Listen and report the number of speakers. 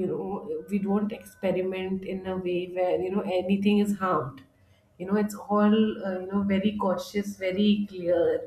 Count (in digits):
1